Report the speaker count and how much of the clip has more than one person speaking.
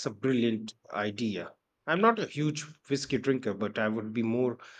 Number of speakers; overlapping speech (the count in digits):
1, no overlap